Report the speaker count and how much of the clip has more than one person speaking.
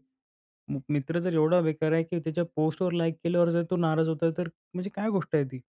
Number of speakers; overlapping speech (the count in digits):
1, no overlap